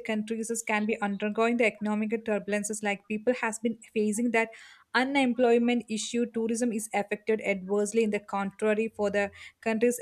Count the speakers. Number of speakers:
1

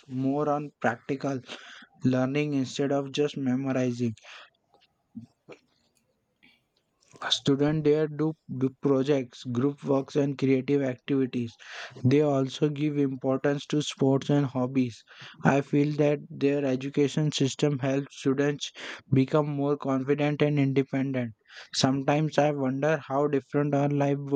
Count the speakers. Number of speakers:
1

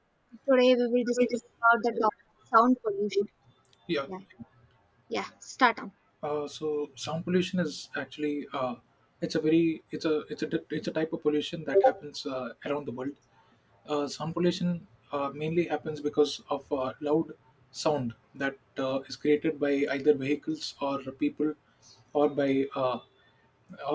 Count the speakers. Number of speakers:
2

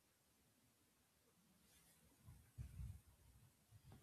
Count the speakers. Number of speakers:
0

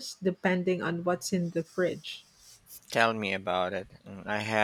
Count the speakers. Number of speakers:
2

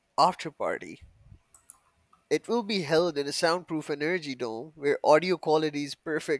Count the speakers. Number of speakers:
1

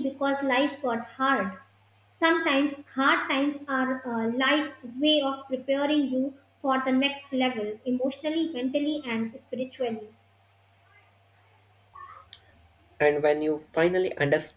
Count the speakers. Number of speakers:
2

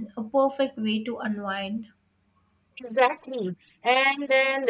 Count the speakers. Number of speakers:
2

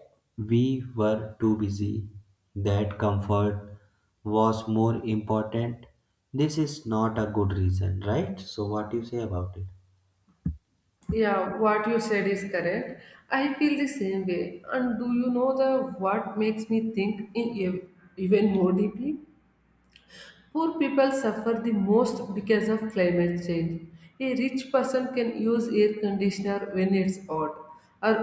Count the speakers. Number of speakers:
2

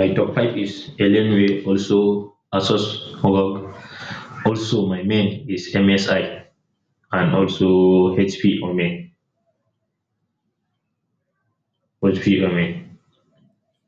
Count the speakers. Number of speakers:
1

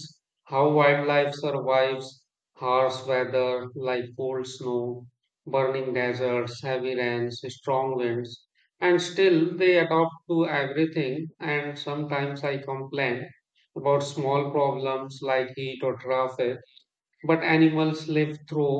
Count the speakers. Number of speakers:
1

